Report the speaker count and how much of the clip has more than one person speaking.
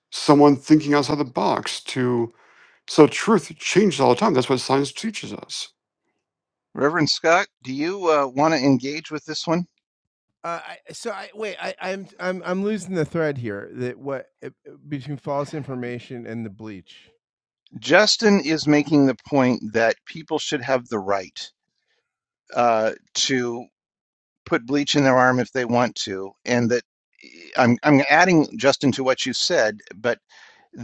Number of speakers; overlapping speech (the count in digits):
3, no overlap